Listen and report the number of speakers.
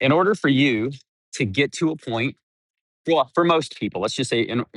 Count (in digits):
1